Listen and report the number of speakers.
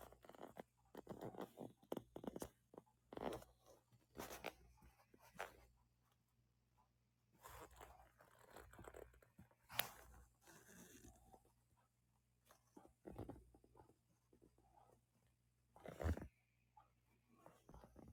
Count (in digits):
0